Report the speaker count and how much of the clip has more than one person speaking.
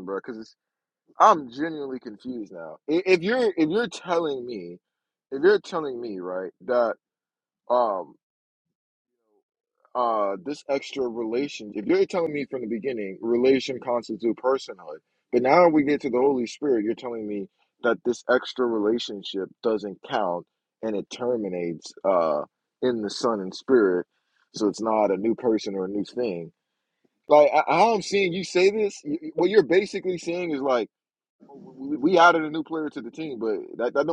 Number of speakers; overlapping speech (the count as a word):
one, no overlap